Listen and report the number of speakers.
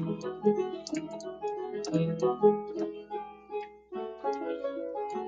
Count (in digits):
0